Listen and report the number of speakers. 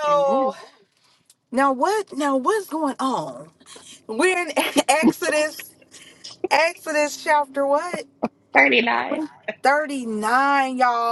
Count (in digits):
2